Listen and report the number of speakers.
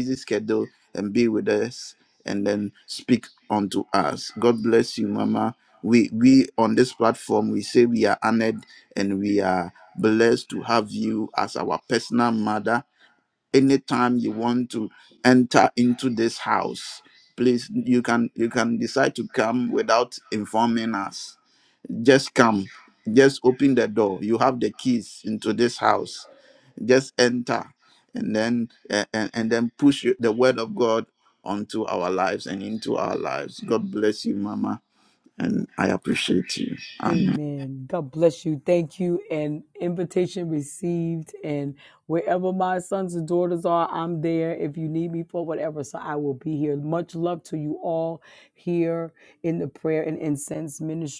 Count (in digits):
2